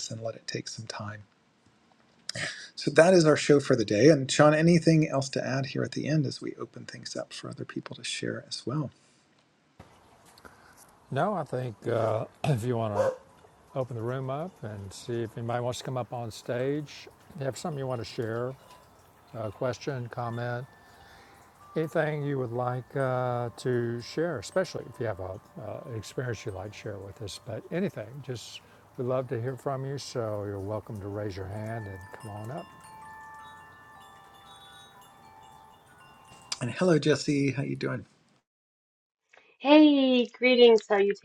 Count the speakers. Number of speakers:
3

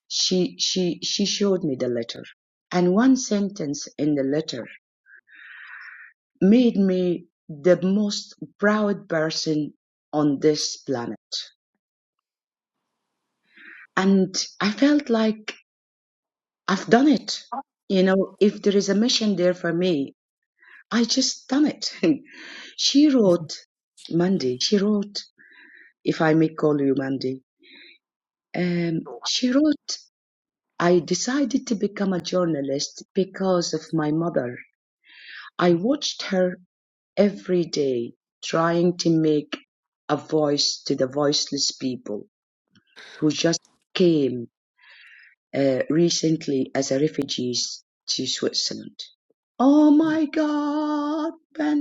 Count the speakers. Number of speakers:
1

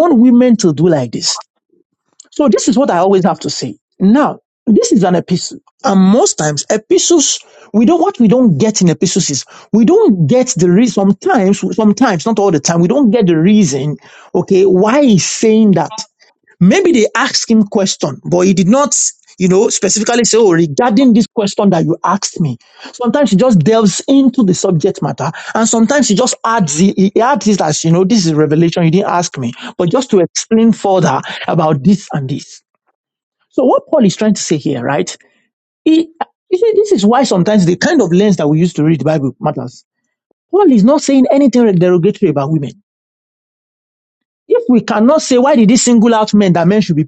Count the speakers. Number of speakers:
1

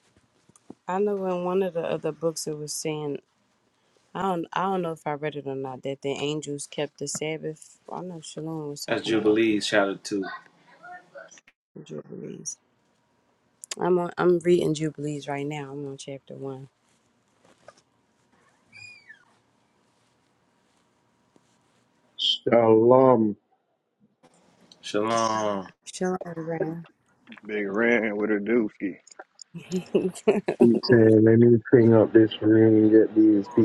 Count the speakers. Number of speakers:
4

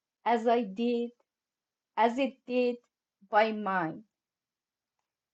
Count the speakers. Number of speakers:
1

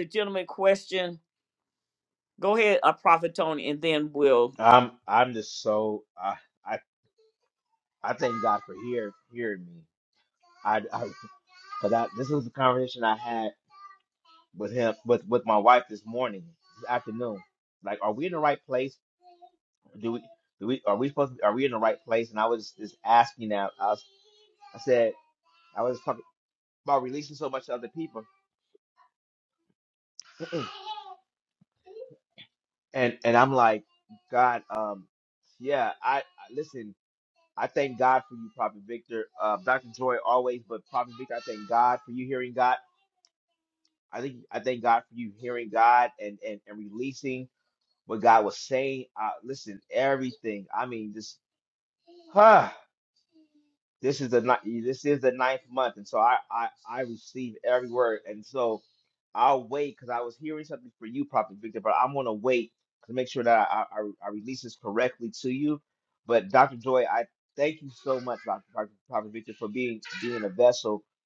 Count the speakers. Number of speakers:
2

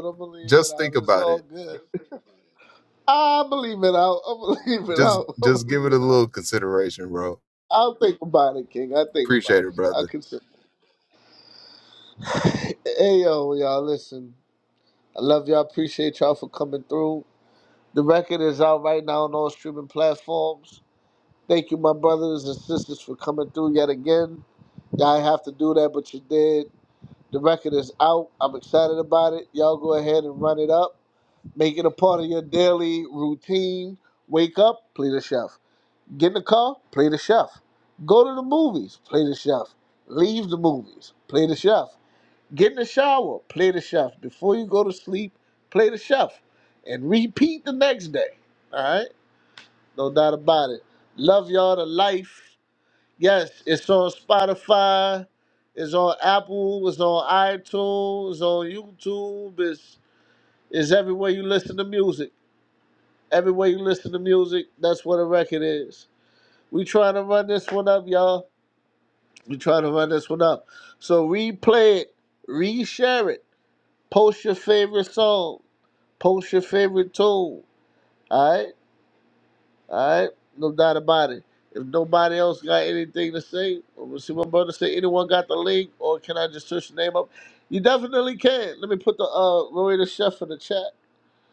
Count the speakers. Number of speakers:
2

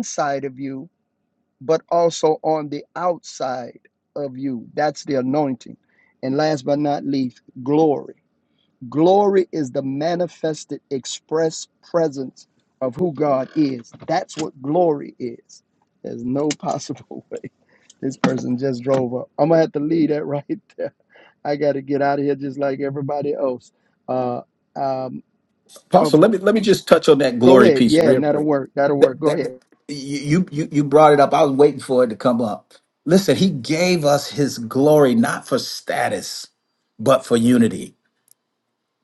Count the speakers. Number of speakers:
2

